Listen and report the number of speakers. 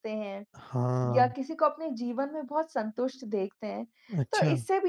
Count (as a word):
two